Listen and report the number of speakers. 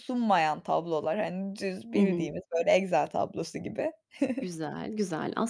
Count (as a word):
two